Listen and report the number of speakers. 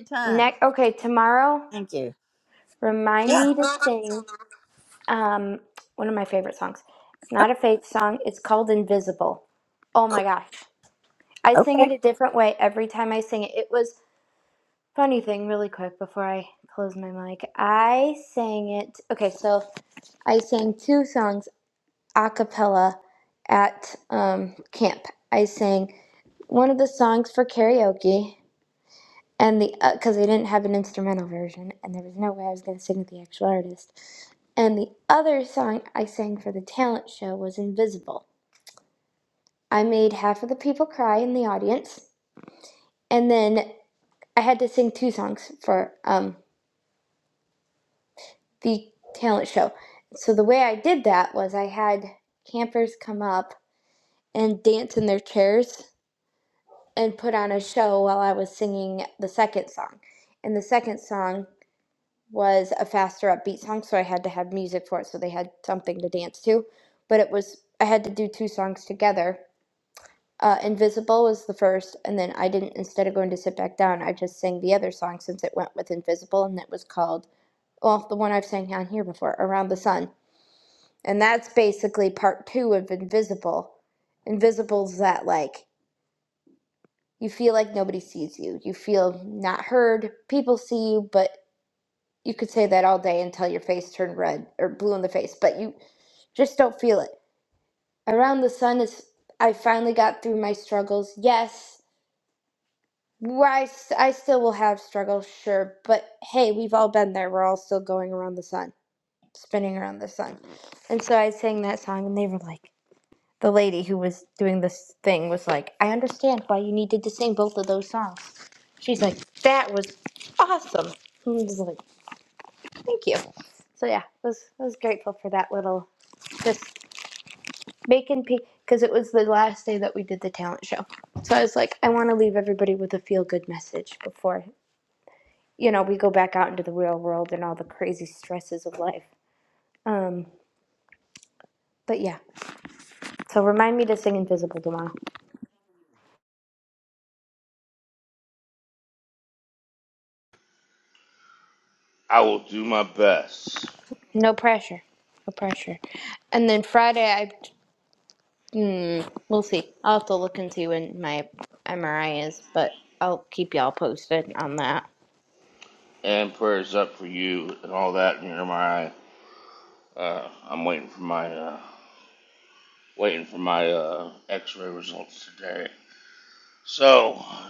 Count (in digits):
3